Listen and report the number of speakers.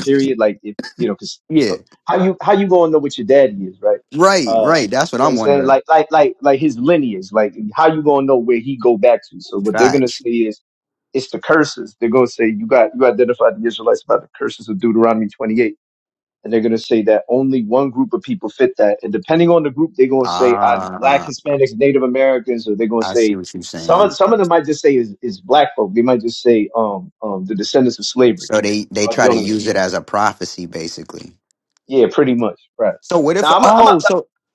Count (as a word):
two